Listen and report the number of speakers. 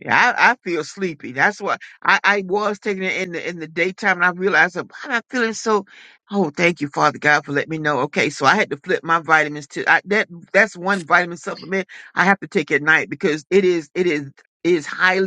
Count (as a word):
one